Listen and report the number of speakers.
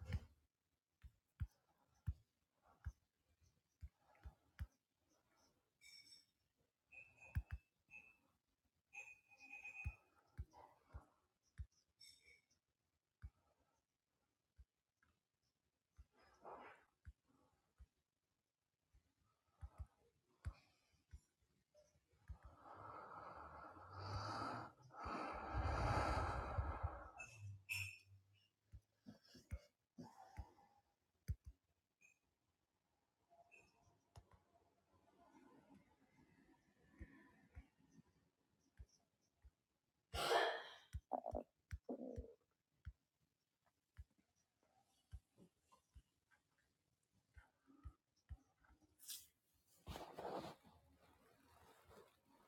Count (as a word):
zero